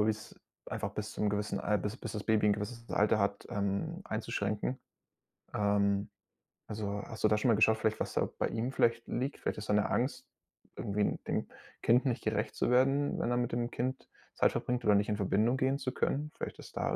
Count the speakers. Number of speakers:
1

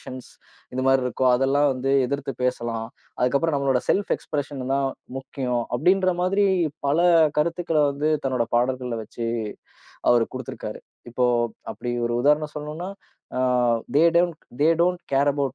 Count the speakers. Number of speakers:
1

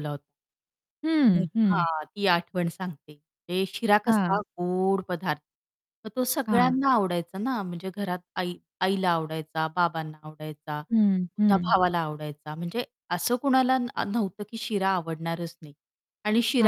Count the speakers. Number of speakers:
2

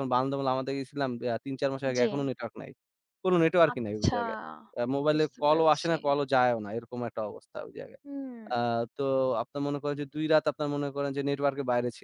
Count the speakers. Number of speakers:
2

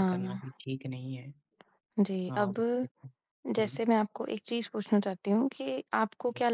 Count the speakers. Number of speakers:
2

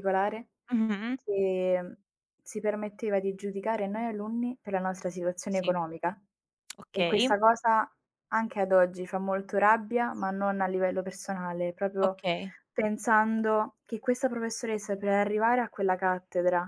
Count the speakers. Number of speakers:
2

